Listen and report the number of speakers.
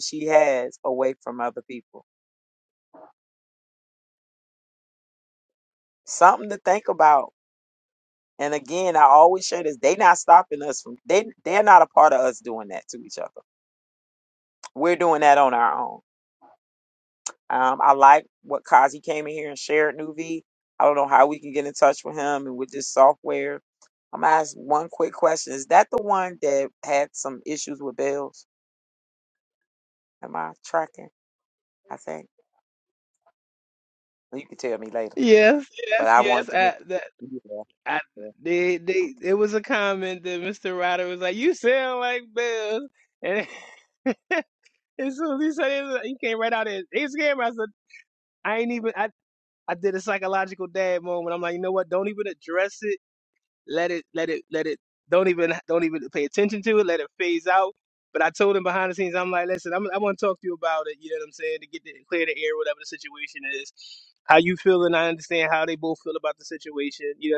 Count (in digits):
2